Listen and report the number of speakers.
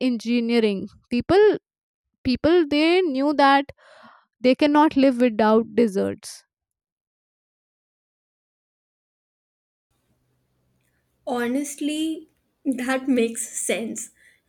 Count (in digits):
2